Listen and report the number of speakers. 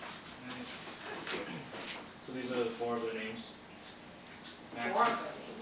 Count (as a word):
two